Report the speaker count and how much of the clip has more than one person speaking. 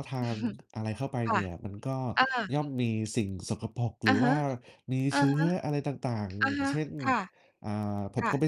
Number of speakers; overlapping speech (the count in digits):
2, about 19%